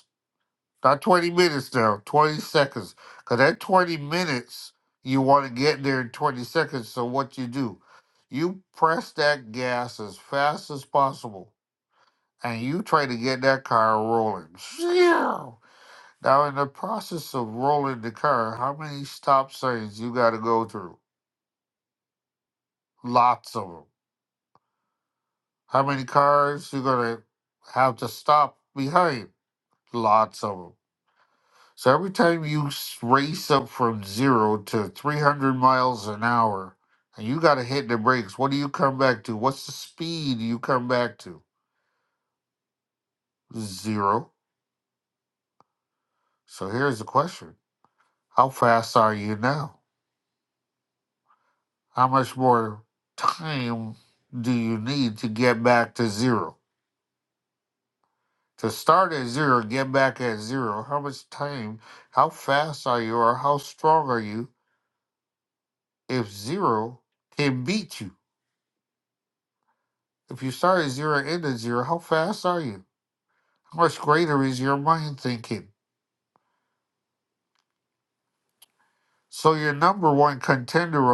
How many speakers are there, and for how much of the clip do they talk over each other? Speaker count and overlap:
one, no overlap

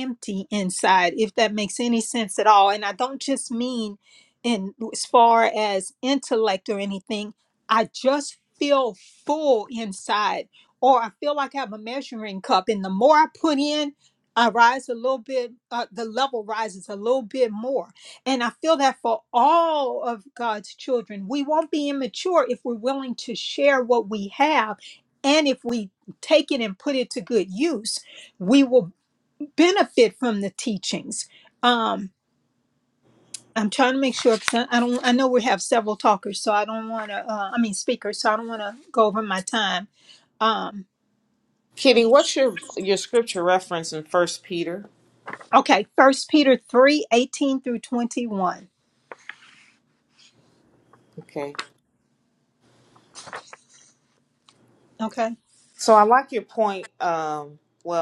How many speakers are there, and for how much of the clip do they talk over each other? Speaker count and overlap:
two, no overlap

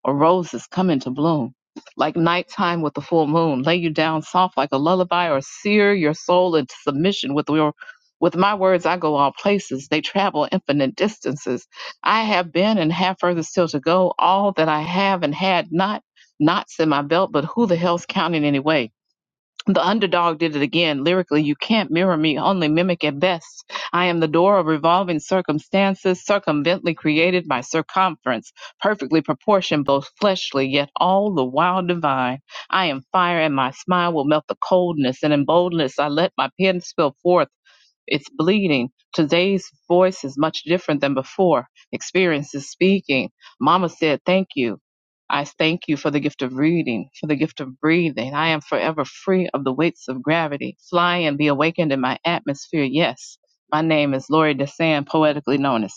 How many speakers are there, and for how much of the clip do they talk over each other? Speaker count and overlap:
one, no overlap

